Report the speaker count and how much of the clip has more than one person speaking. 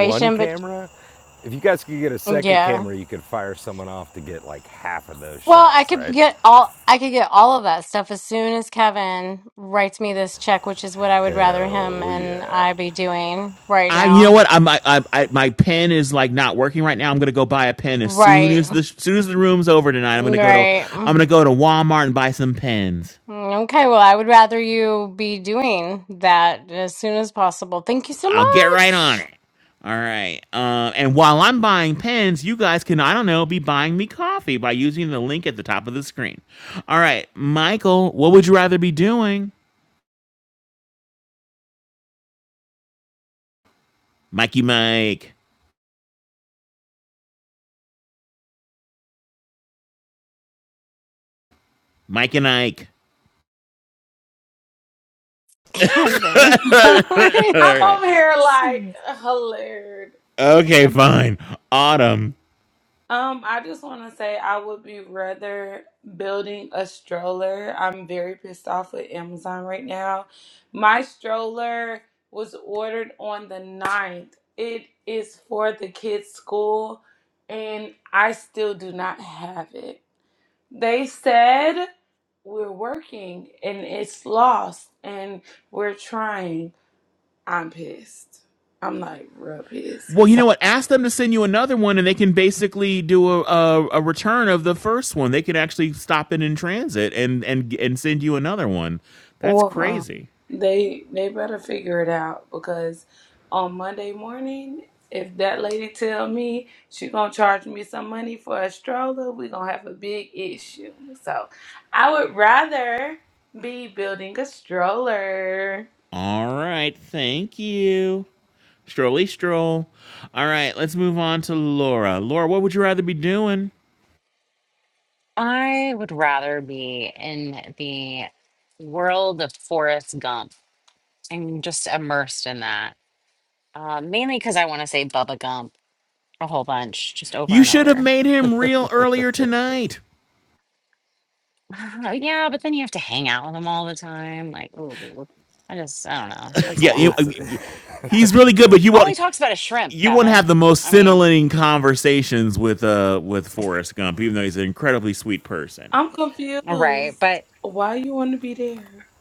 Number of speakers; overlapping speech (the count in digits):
5, about 6%